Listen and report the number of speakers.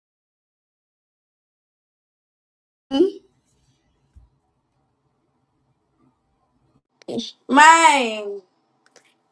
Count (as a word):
one